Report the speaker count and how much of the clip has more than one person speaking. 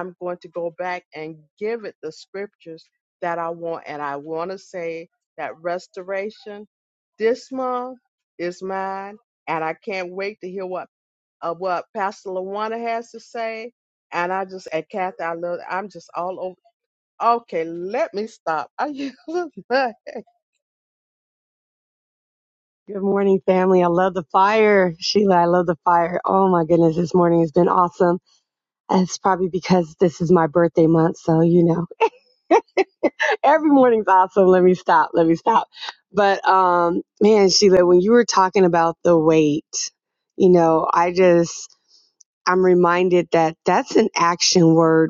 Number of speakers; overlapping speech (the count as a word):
two, no overlap